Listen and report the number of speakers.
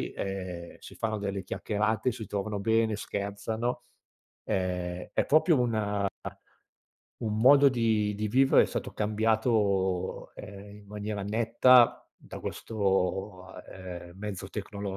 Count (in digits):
1